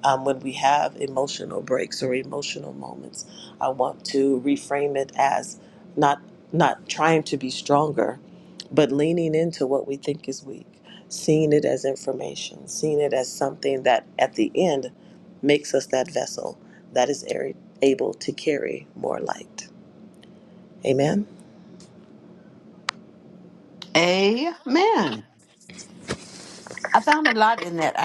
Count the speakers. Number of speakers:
two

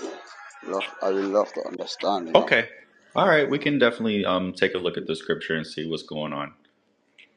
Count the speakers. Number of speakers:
two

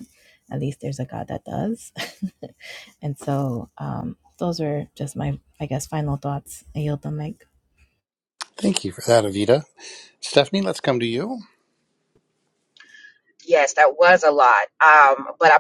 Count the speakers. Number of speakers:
three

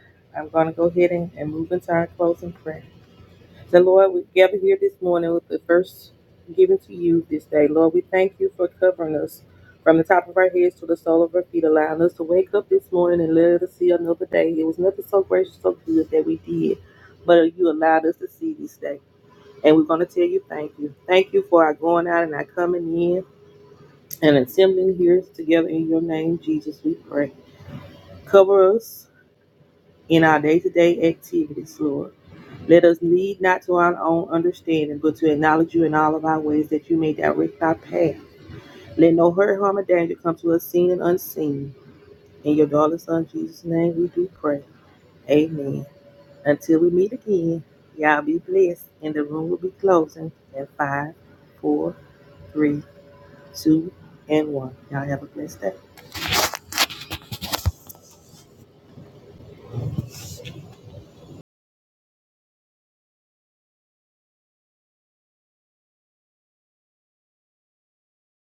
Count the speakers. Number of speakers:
one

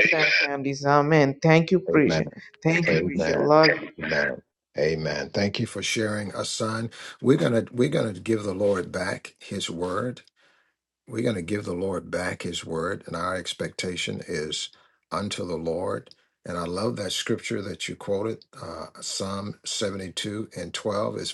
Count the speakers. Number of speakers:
two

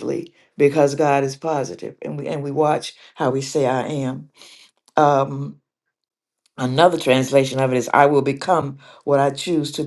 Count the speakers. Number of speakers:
one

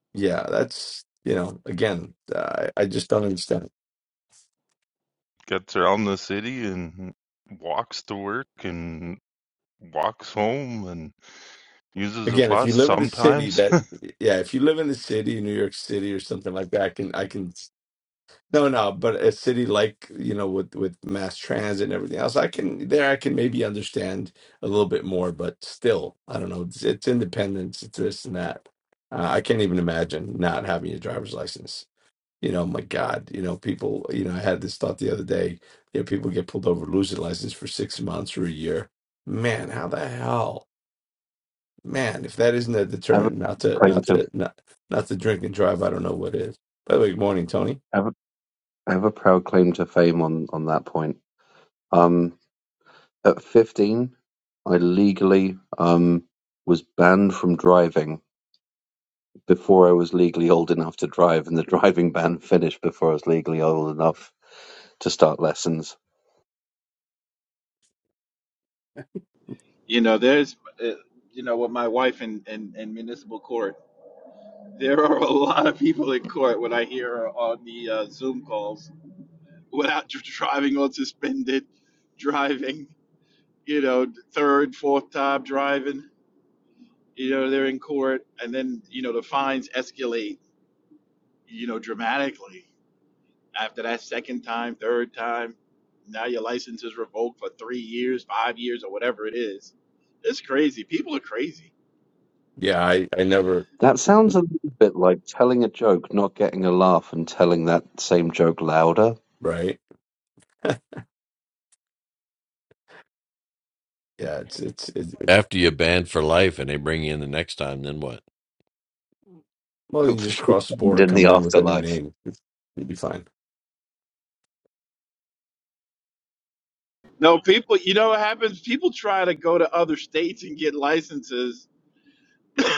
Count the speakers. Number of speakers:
five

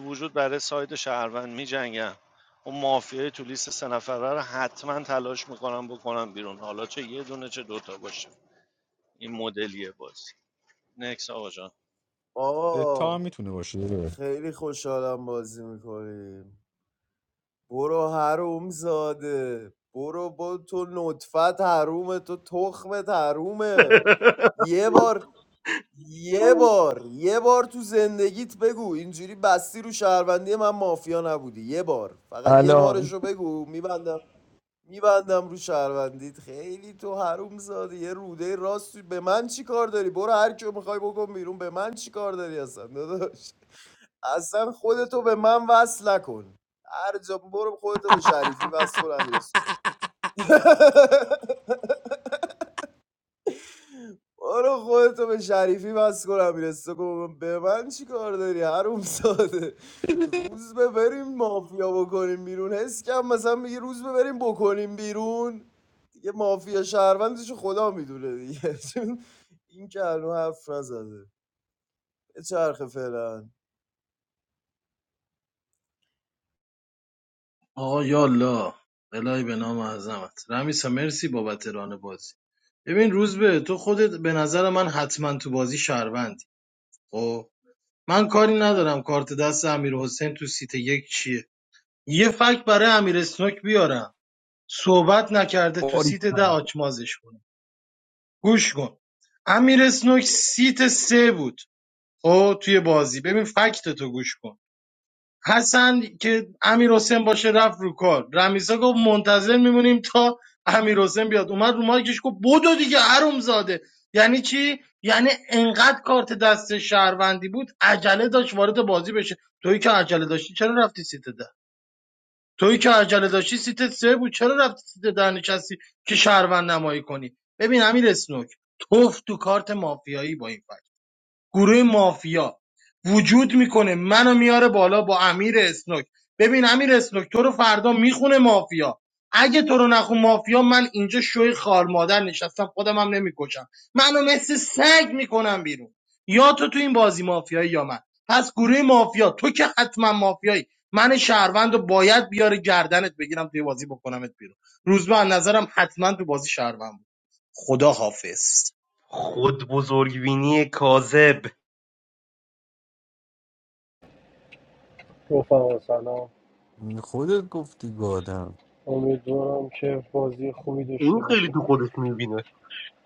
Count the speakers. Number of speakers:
six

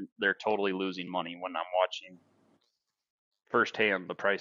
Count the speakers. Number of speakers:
one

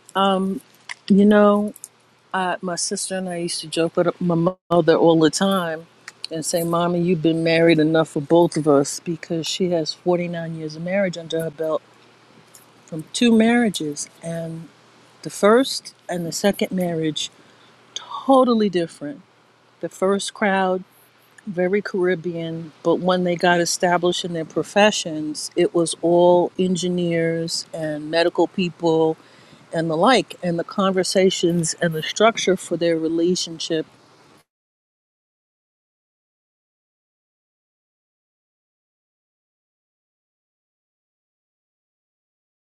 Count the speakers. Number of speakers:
one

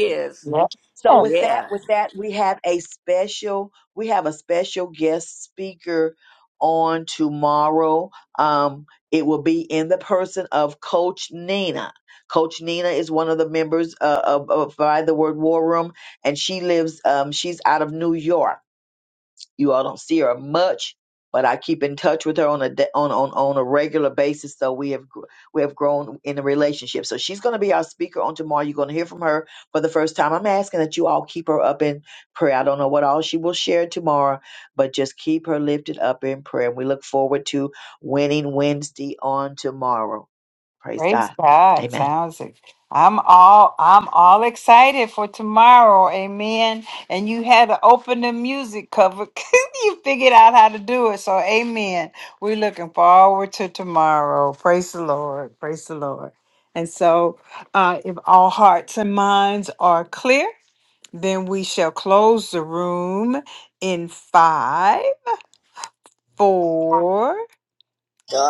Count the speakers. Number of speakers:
three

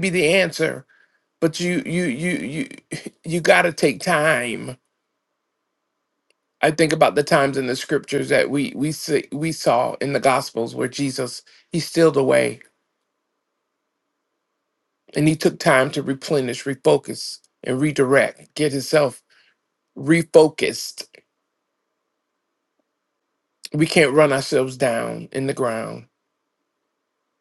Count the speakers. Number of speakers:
one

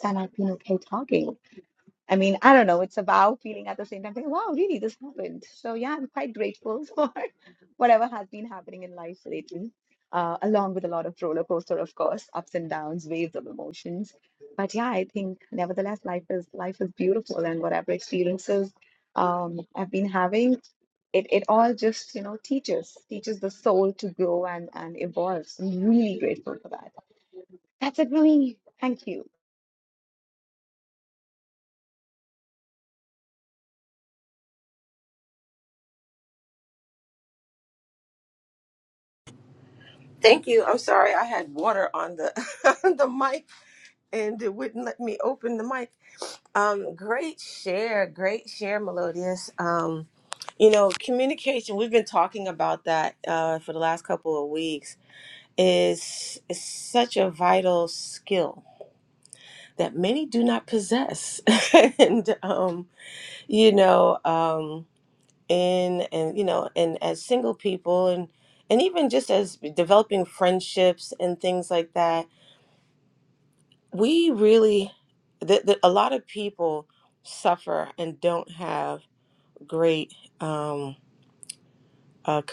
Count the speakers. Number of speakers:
two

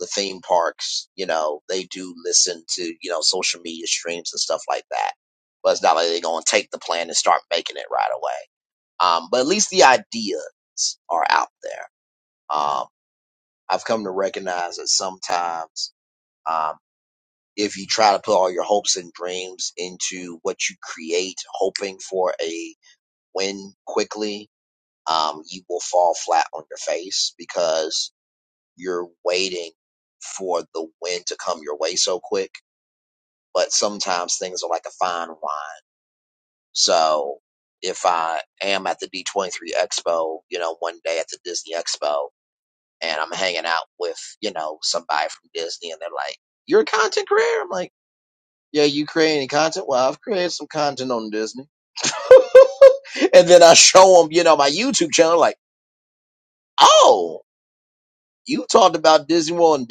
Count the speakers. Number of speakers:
one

